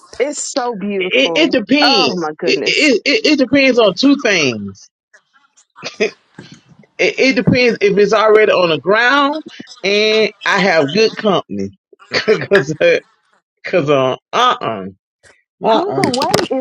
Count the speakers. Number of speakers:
2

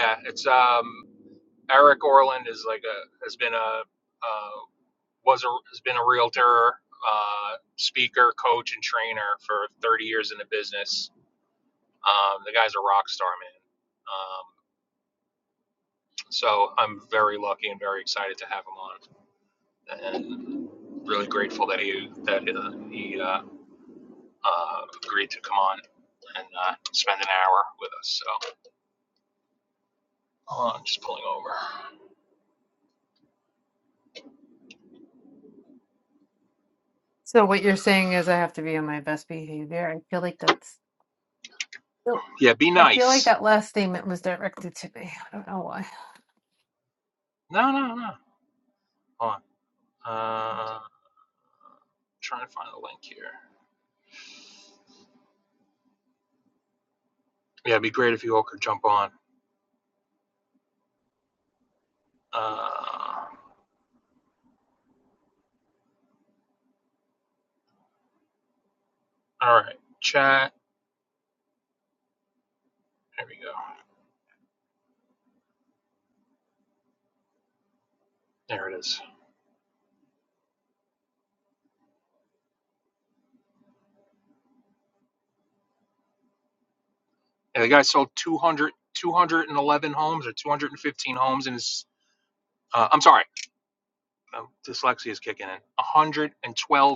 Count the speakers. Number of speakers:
2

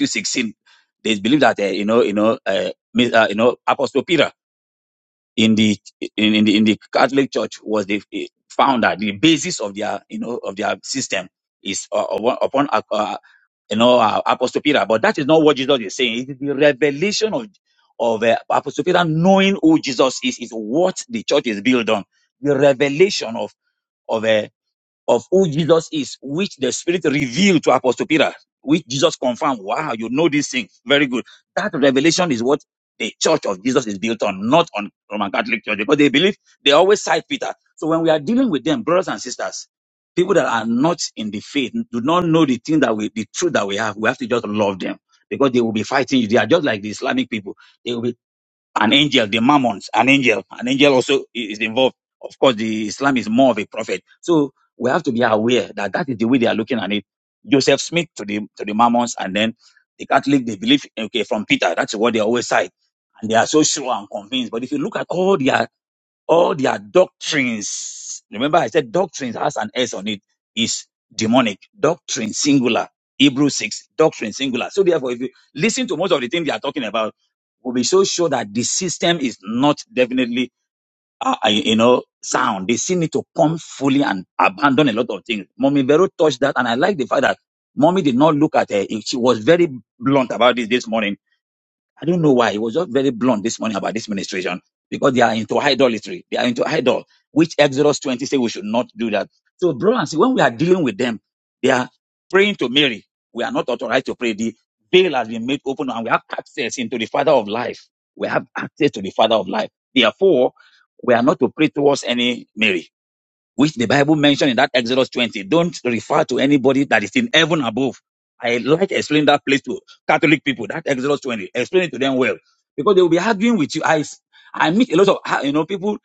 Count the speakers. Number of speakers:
1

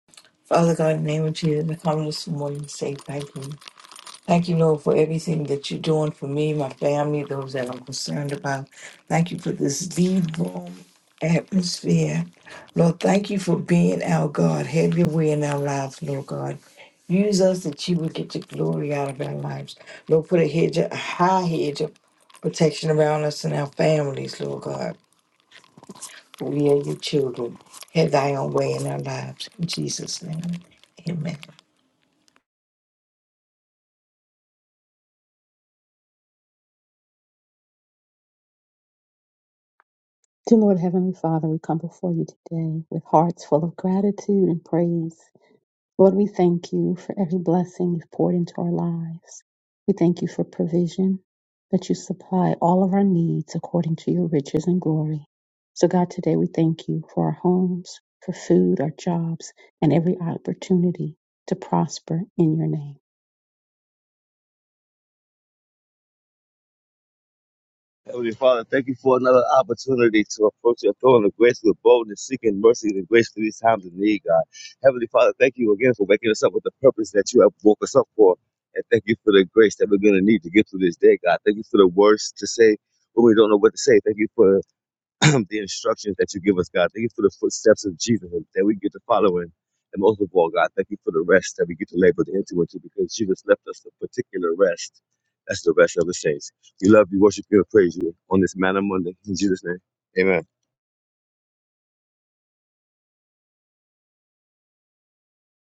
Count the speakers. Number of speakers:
3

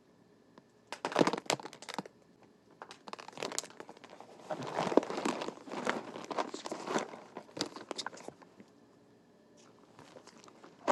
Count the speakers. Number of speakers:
0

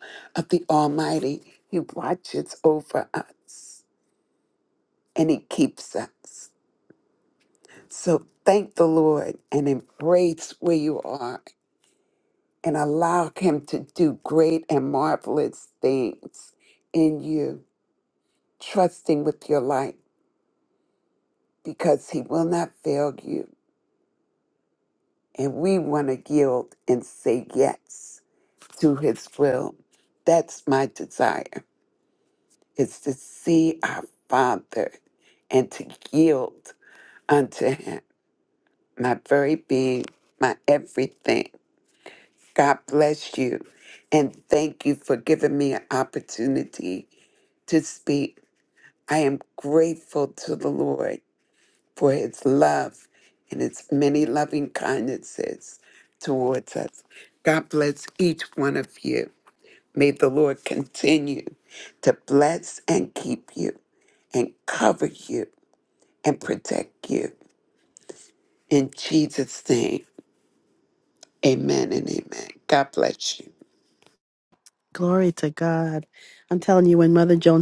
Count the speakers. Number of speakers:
2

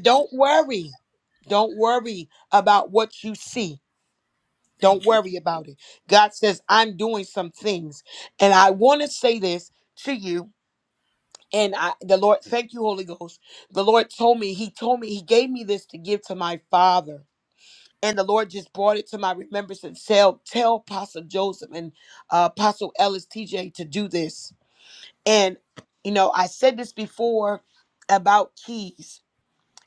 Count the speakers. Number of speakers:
1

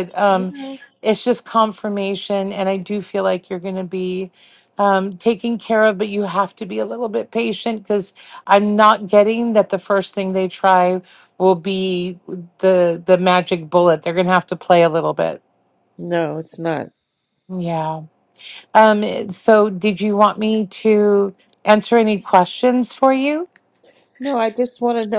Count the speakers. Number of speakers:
2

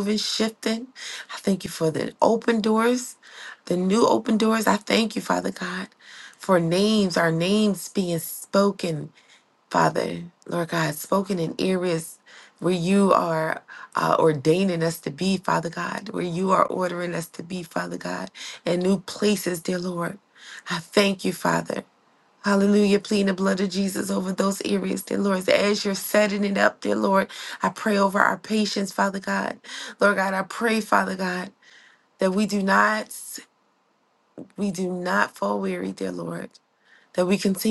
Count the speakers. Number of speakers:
1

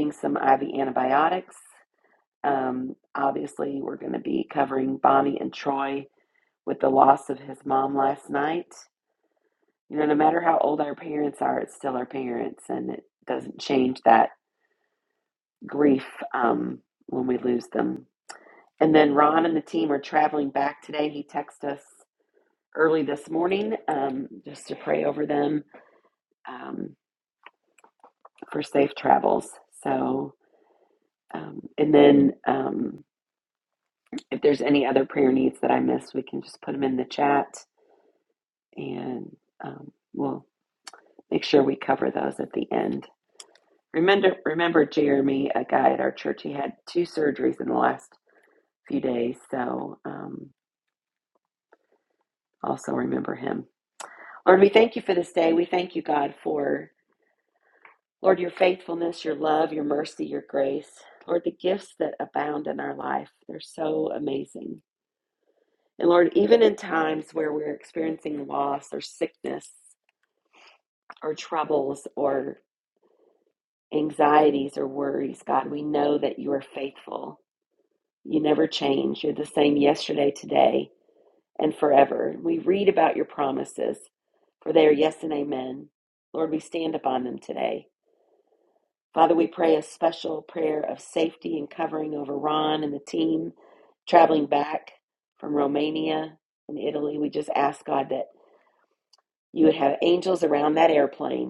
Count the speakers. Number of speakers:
1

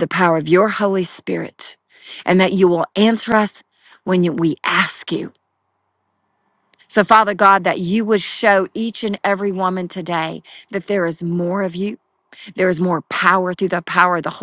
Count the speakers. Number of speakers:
1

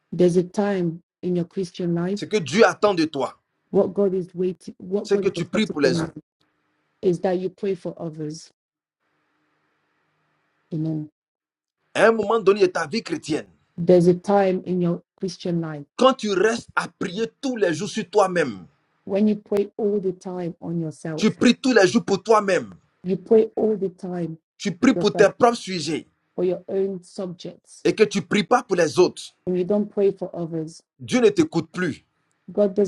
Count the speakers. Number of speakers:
2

